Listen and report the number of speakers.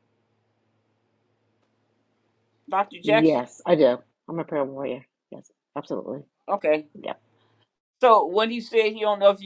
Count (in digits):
2